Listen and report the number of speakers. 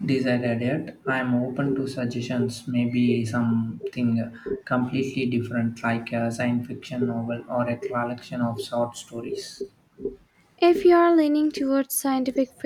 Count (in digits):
2